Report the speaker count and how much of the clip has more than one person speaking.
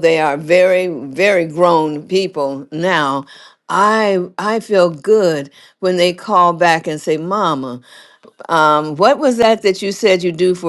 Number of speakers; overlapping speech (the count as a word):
one, no overlap